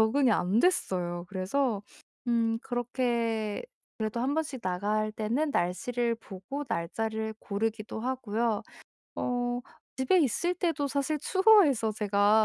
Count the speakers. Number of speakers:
1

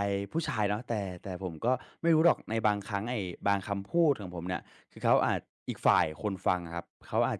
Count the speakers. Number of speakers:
1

